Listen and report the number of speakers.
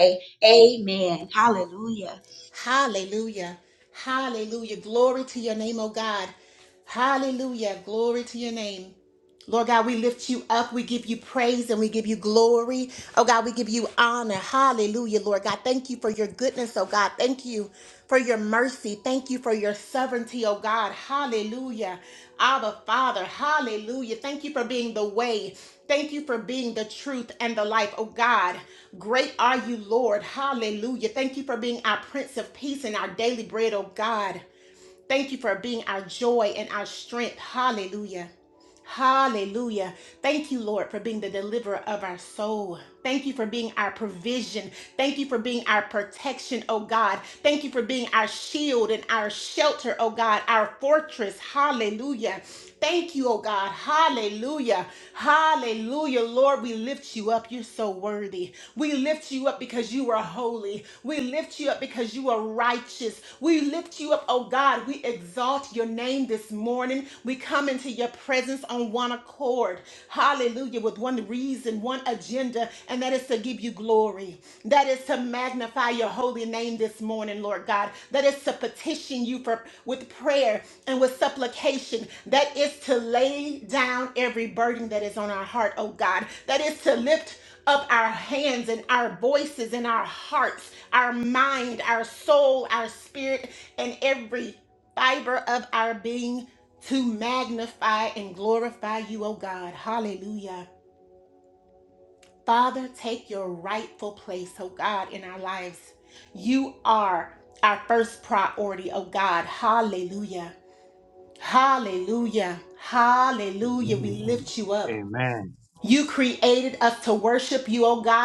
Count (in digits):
3